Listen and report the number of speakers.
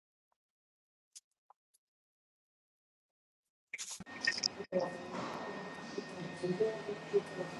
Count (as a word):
zero